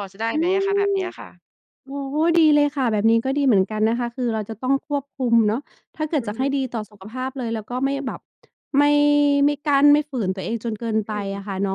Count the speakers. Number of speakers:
two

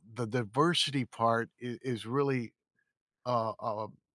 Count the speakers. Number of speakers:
one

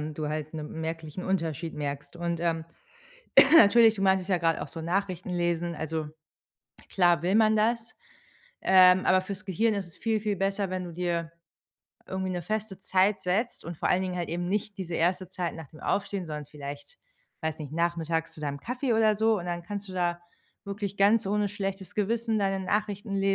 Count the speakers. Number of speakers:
one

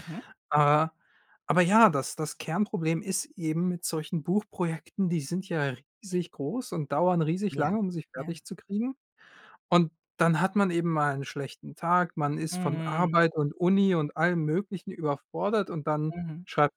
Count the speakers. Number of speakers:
two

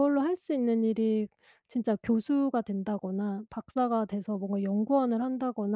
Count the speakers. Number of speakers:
one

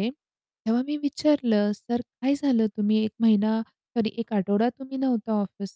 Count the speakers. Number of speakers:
one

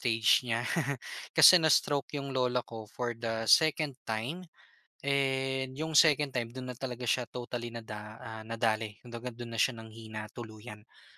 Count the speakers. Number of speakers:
one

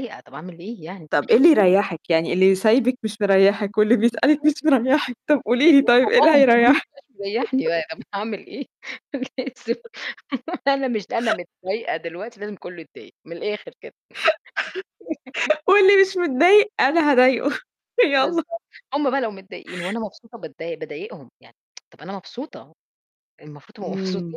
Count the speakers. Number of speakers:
two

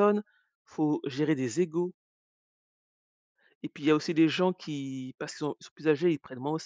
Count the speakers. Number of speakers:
one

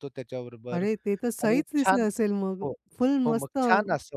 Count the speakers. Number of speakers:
two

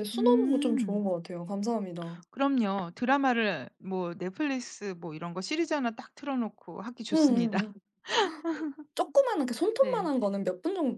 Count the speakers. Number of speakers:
two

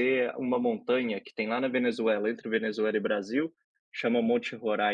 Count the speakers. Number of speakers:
one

